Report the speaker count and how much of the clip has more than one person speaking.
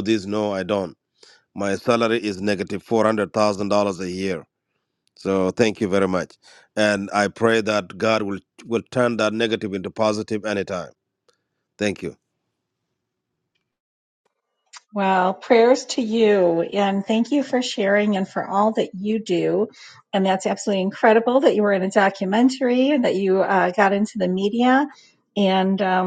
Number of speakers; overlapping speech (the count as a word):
two, no overlap